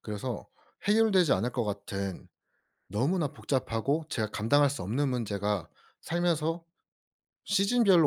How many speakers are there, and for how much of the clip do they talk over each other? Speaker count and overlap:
1, no overlap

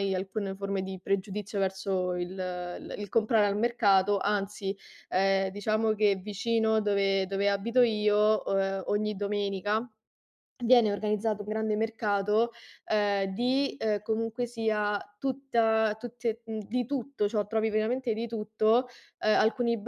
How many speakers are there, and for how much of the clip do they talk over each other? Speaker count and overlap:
1, no overlap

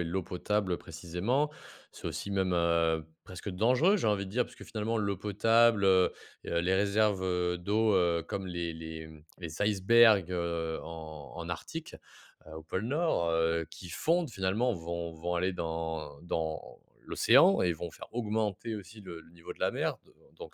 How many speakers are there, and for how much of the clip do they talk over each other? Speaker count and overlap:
1, no overlap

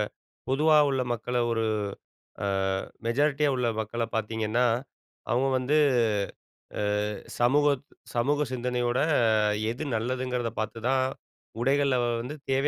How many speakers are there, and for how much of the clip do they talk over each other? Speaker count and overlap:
1, no overlap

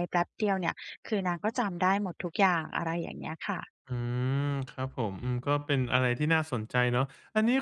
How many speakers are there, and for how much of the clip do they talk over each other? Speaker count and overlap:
2, no overlap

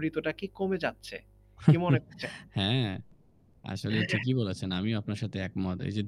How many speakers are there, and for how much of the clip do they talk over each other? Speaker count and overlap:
2, about 6%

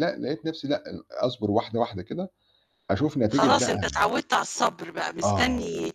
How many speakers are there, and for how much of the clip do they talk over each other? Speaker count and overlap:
2, about 15%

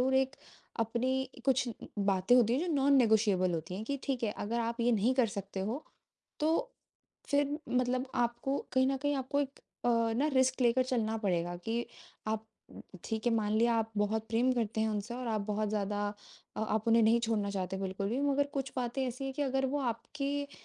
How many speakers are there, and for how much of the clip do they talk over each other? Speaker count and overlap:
1, no overlap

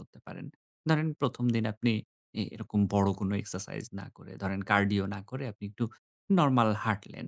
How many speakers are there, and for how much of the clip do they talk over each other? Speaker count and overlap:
1, no overlap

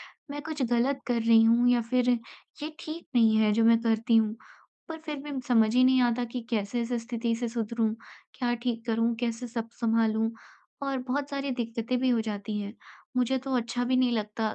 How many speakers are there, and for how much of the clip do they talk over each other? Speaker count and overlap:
1, no overlap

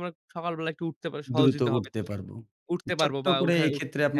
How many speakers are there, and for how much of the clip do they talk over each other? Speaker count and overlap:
2, about 40%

